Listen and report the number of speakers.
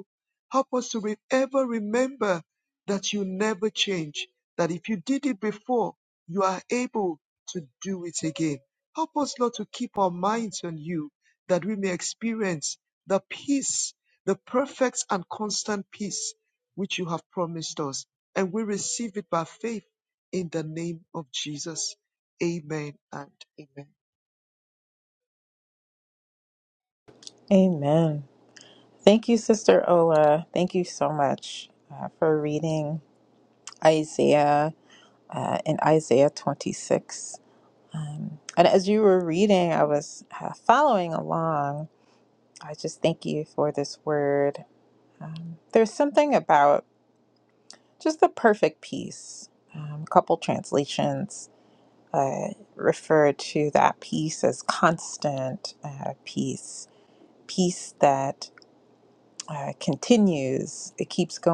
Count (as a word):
two